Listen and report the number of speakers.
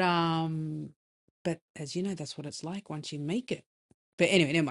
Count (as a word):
one